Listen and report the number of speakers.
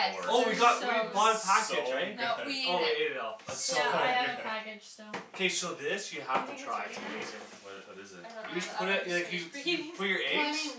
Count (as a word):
four